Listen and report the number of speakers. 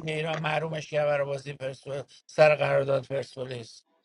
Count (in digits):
1